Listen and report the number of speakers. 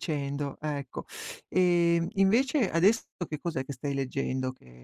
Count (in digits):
1